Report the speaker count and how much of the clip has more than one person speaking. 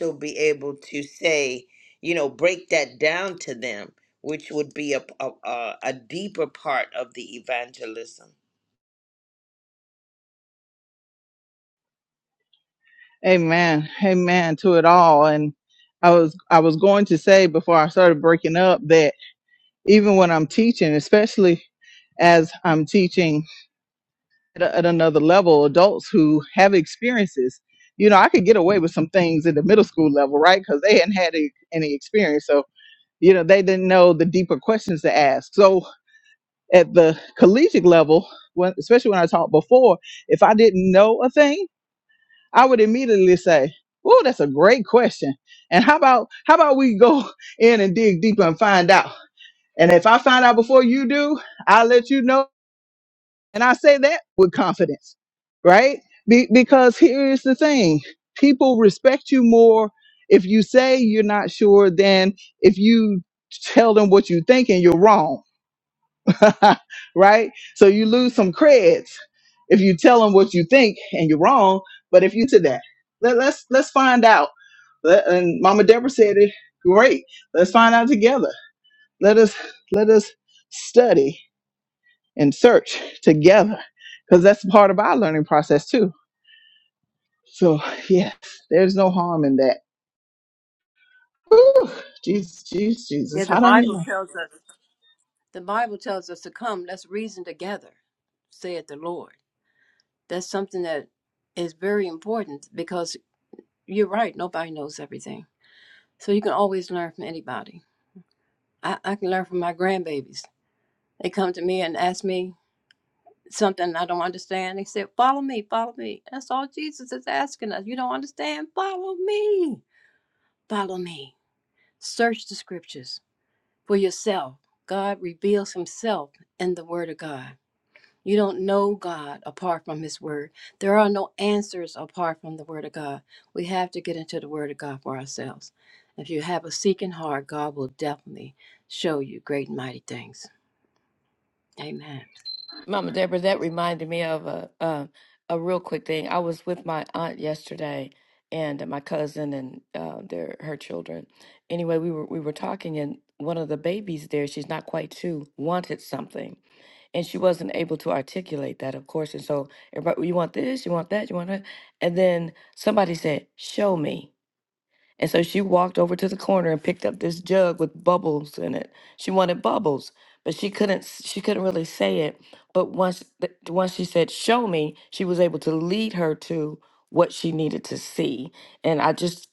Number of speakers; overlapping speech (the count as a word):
four, under 1%